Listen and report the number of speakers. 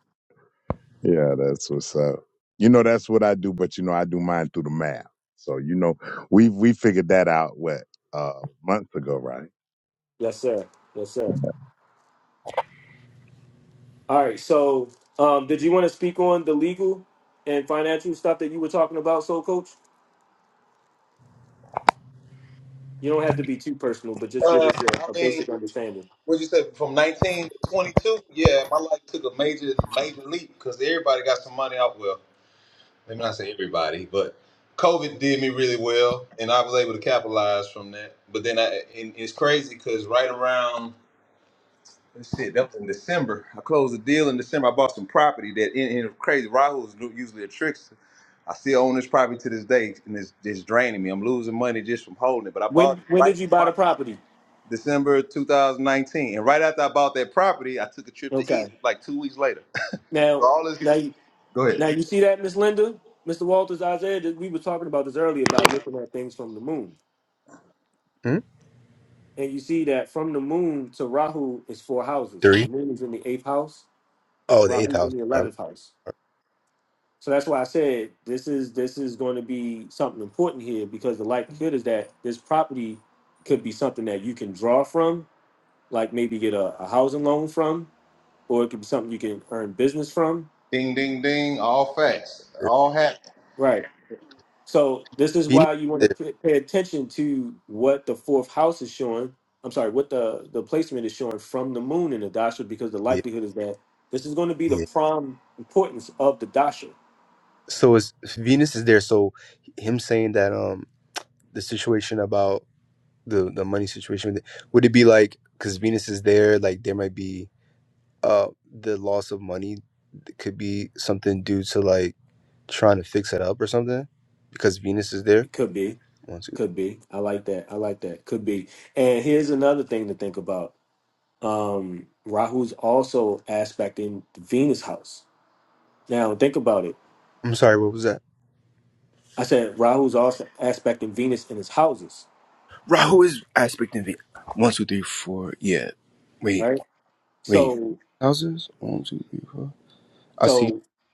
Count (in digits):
4